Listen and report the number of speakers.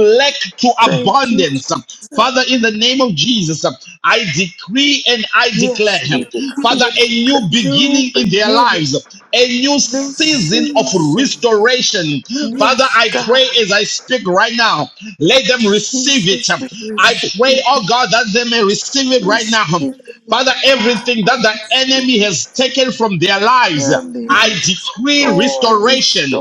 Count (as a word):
two